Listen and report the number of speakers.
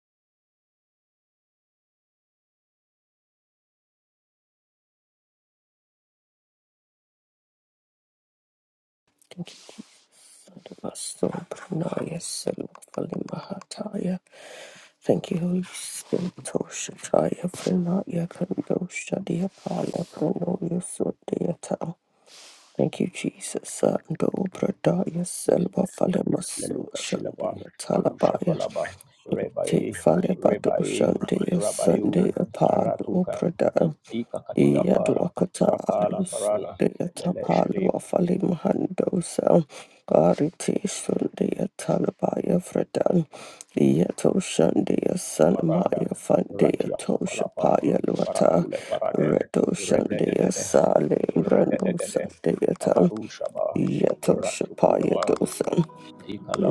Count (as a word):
two